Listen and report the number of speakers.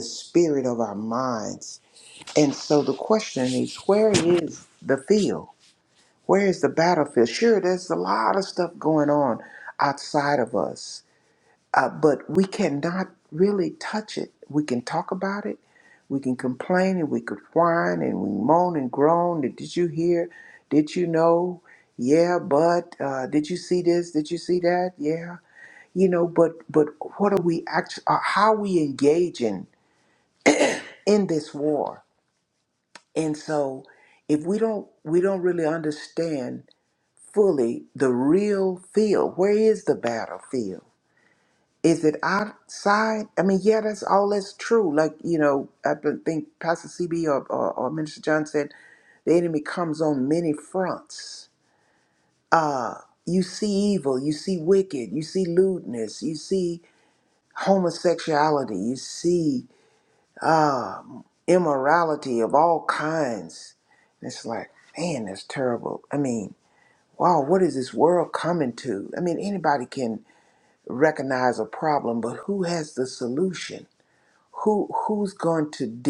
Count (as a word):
one